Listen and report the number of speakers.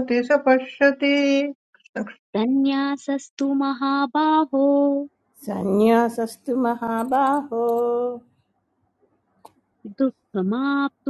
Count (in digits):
3